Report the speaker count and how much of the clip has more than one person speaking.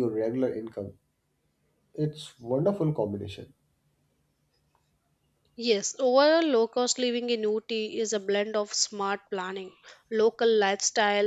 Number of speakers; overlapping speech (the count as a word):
two, no overlap